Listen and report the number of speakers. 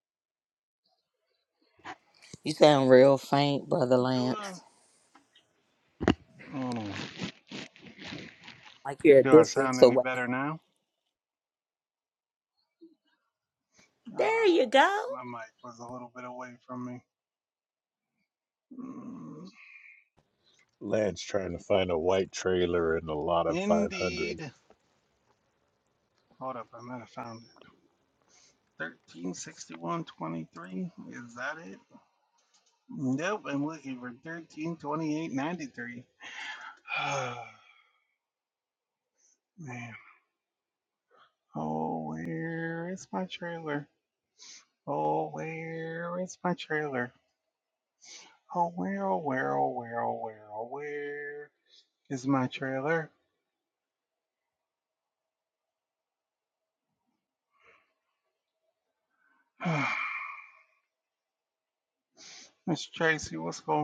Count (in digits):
3